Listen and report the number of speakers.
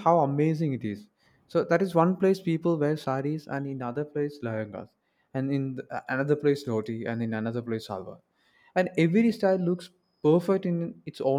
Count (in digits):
1